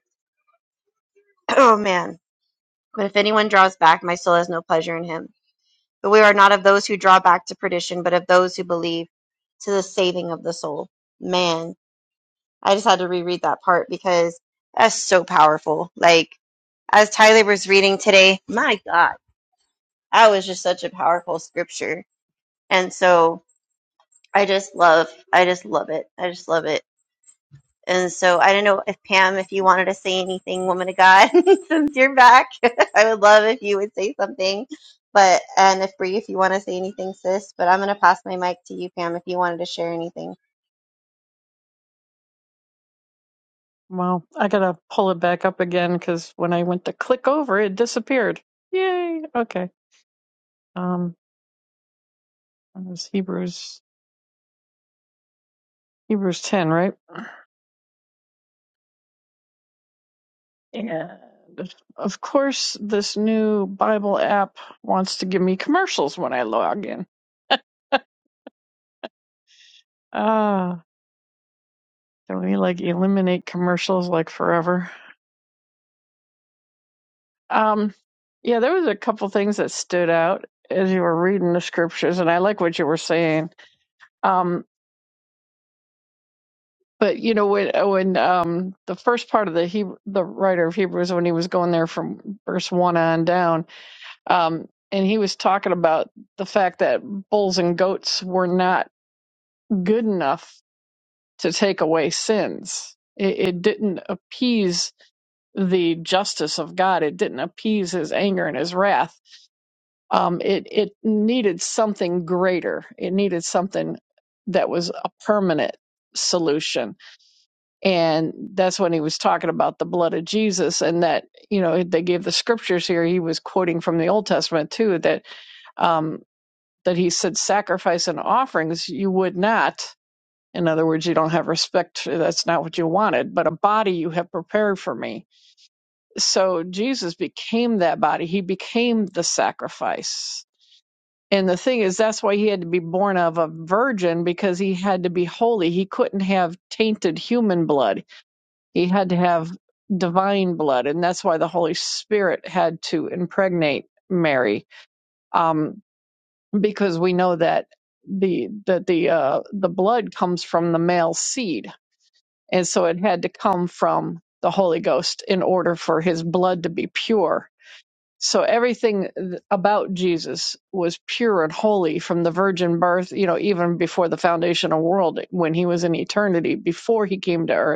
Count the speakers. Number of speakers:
two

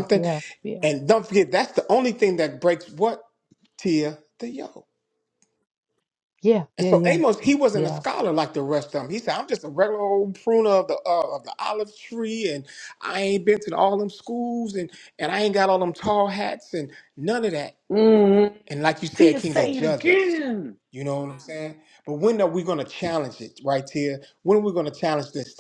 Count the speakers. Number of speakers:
three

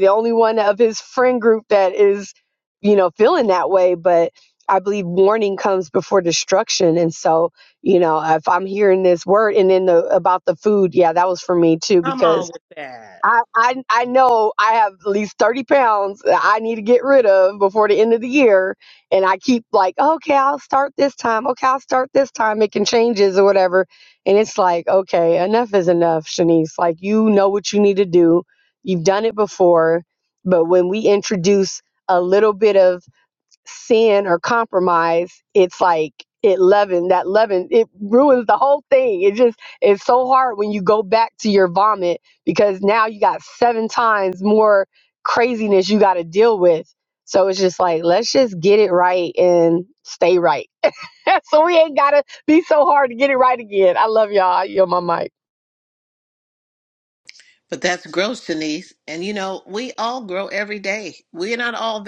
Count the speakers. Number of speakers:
three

